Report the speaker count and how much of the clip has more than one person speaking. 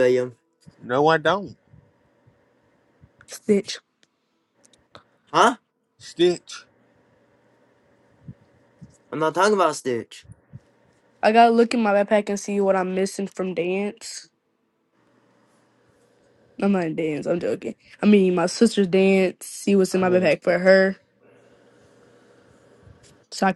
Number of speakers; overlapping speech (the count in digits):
3, about 2%